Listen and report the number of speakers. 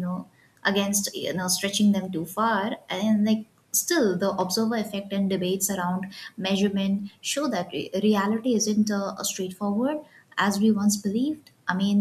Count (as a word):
one